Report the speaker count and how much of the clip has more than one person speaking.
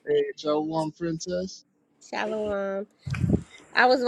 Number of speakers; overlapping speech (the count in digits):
2, no overlap